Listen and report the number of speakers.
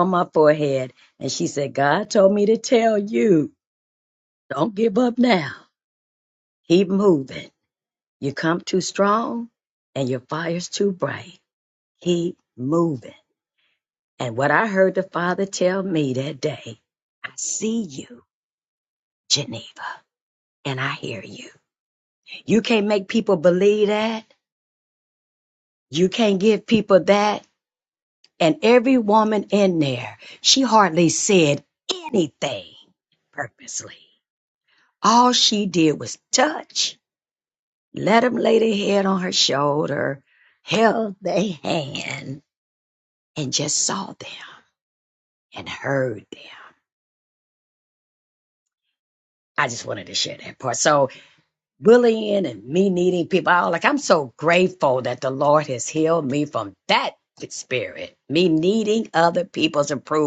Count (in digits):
1